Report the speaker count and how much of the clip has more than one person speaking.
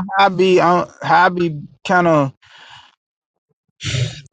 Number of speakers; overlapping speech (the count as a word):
one, no overlap